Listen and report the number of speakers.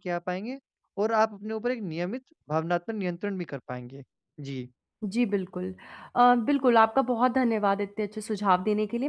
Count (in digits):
2